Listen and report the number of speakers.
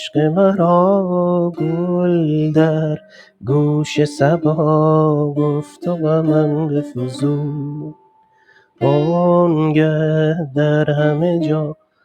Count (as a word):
one